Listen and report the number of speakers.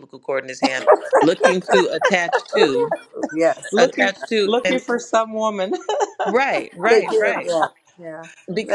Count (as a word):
three